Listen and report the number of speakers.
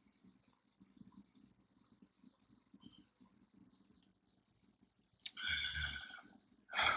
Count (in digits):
0